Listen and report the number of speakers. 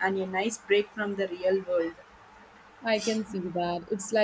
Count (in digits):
2